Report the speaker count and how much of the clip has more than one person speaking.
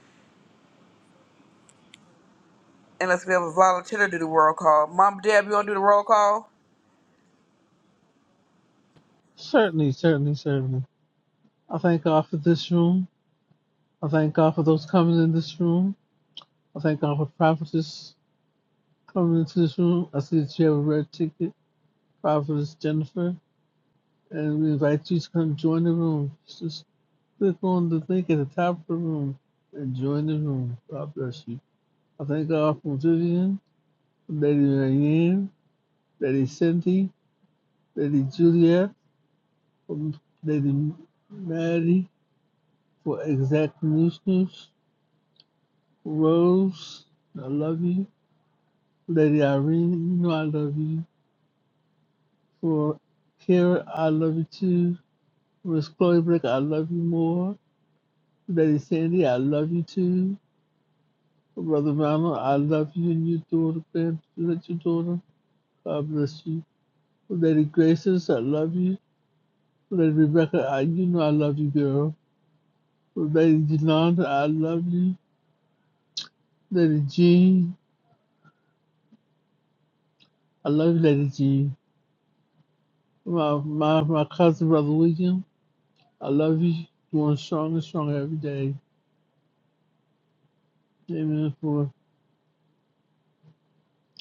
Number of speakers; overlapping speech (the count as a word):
two, no overlap